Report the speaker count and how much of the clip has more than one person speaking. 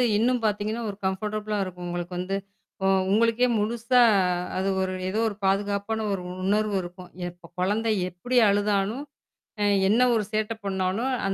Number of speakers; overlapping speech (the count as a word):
one, no overlap